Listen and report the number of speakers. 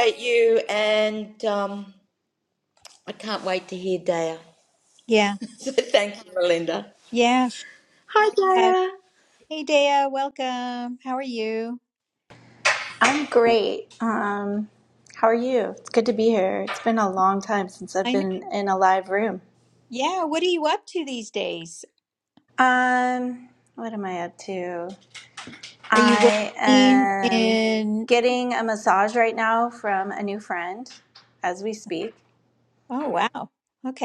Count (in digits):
3